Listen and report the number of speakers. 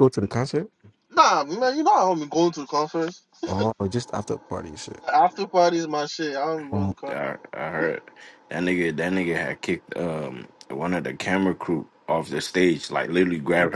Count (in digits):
3